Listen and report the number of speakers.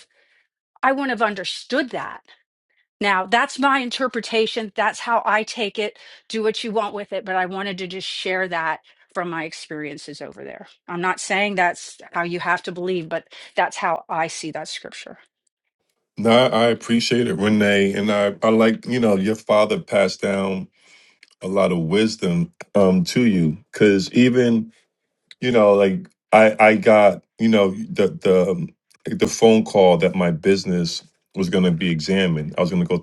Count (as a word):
two